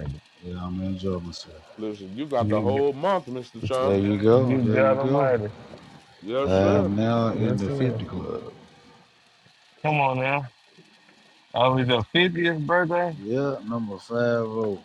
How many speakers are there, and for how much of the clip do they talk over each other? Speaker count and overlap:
3, about 20%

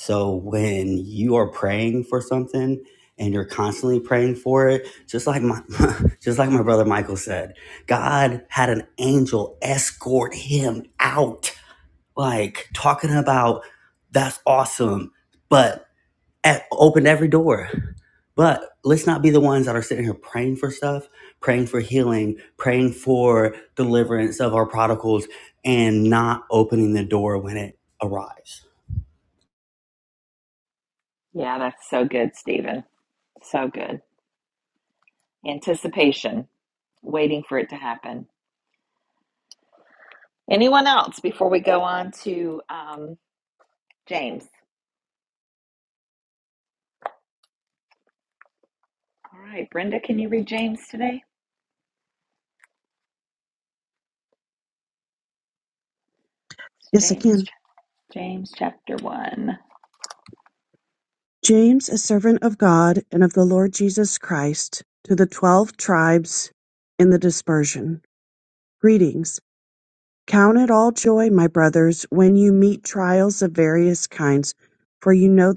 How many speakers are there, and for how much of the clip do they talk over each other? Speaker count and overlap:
3, about 1%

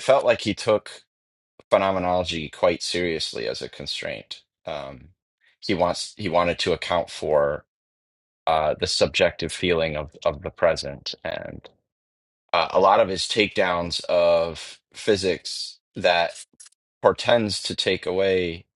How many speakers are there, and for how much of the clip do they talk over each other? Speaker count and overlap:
1, no overlap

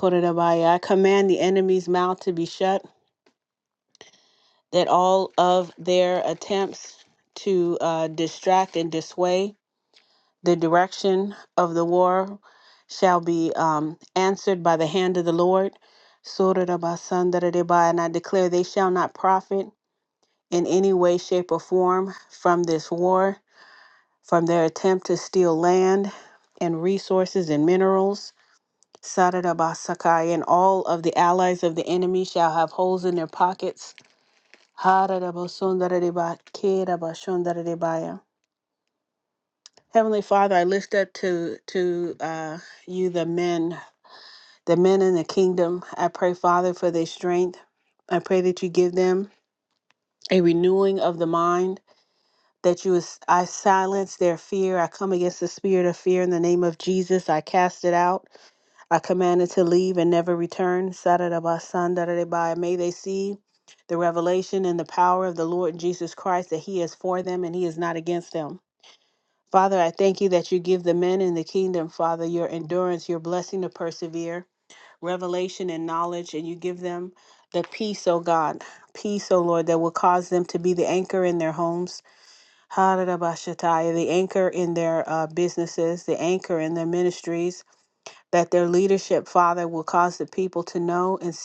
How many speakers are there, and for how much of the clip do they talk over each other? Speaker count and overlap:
1, no overlap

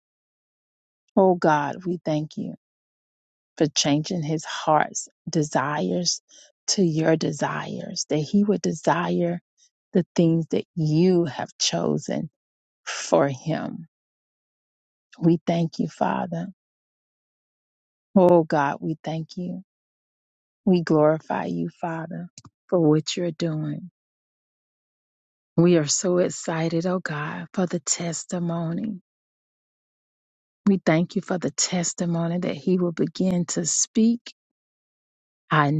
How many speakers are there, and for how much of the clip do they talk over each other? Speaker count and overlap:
1, no overlap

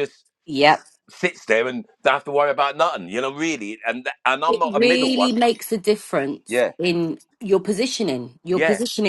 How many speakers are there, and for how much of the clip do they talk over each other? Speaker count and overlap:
2, about 12%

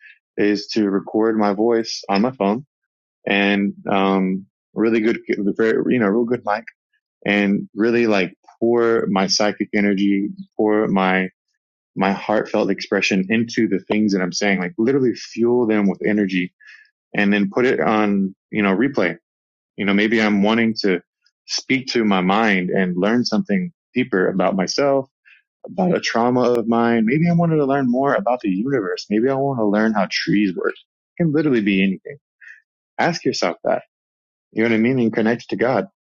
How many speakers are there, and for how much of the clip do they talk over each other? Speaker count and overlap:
1, no overlap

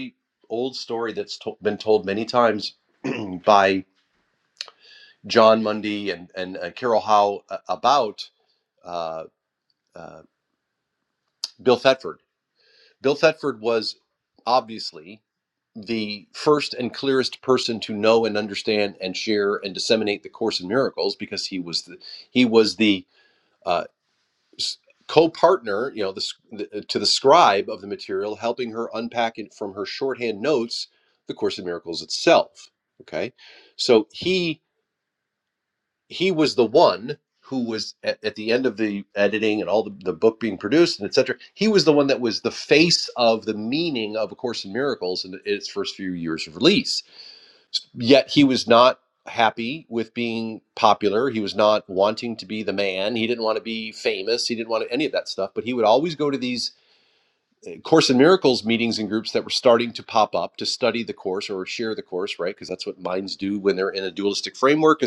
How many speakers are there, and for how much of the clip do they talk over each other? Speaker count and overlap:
1, no overlap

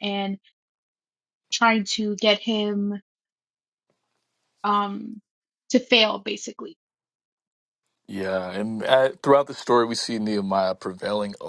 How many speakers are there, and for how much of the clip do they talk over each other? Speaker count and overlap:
2, no overlap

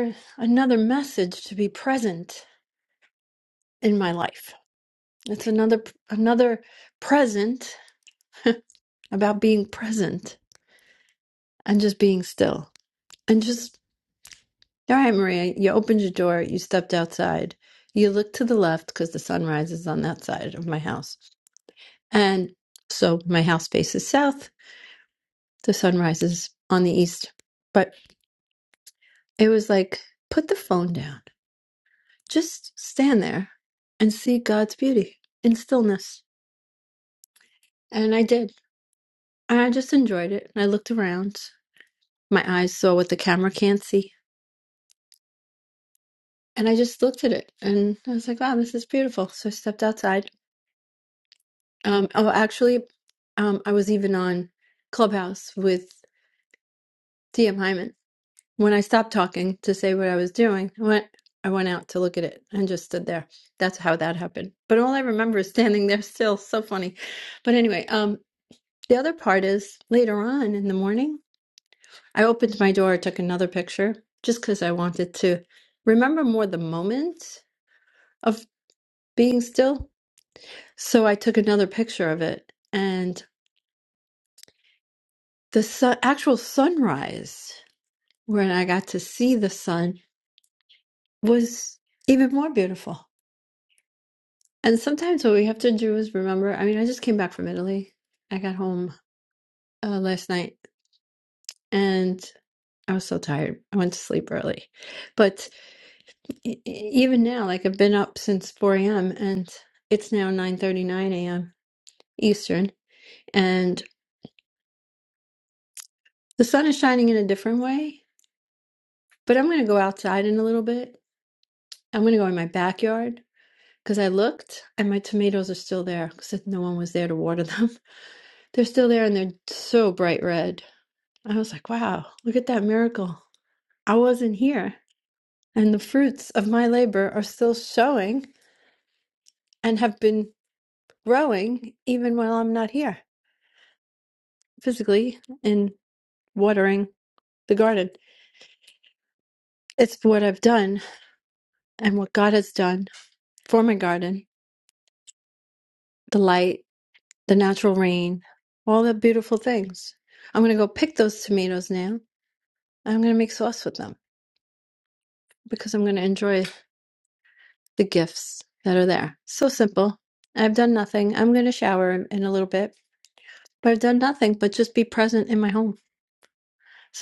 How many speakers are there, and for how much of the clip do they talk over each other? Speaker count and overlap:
1, no overlap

